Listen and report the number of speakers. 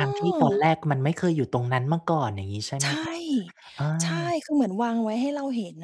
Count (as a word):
two